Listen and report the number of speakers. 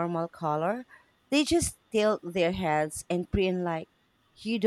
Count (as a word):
one